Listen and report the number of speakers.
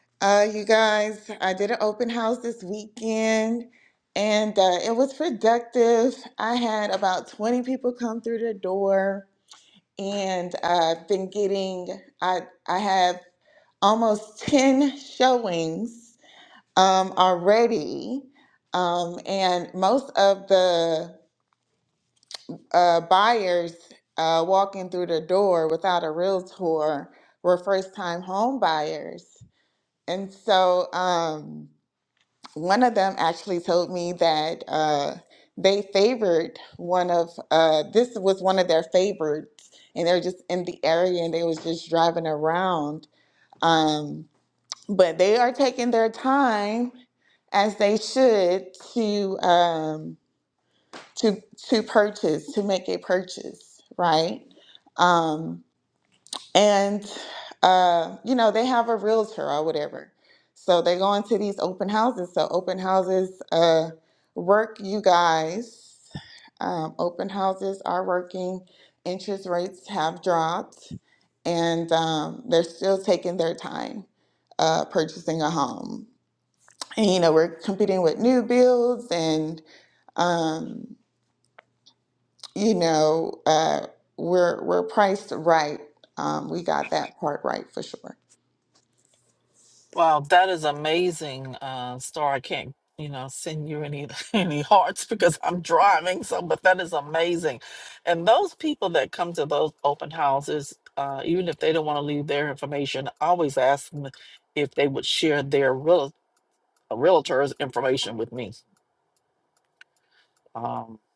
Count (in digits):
2